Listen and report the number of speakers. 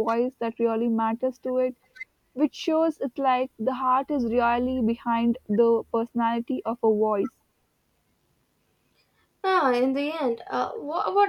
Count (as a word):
two